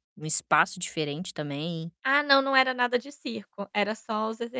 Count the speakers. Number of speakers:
2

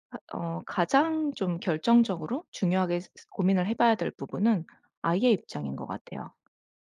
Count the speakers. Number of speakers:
1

